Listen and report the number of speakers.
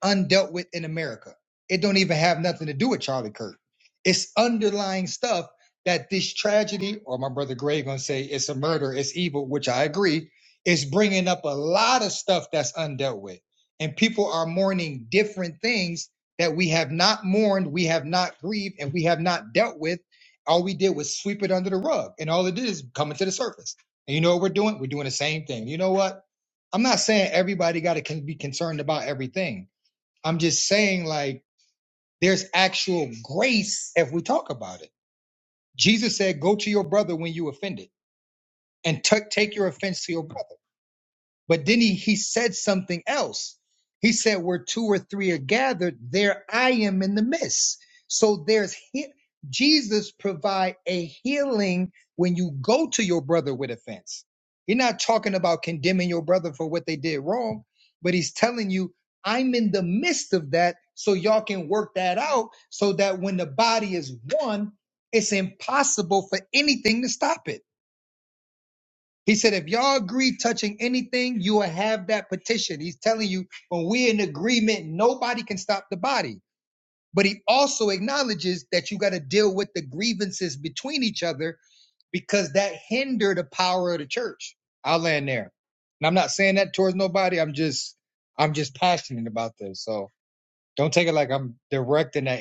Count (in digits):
1